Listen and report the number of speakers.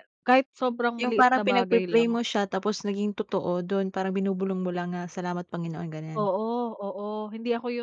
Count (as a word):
two